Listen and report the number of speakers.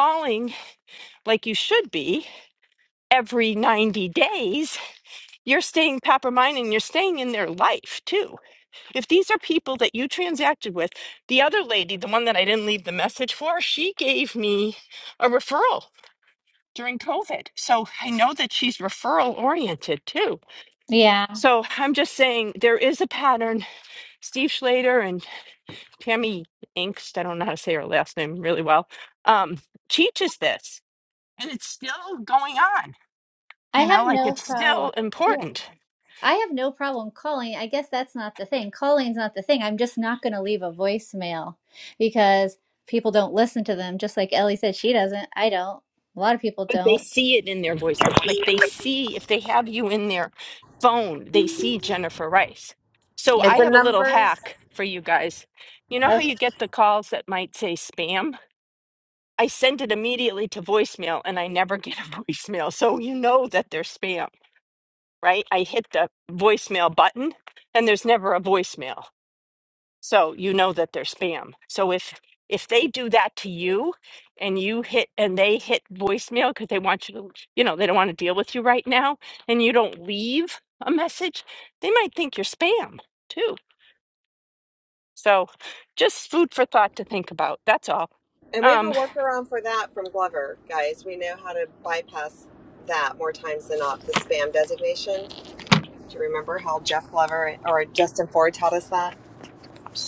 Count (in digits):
3